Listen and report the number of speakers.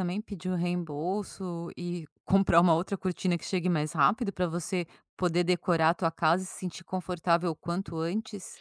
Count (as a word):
one